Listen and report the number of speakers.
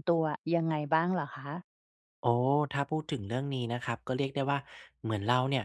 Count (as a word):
two